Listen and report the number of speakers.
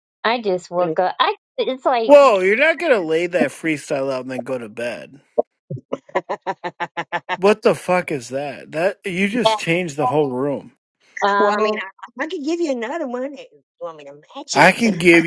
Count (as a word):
three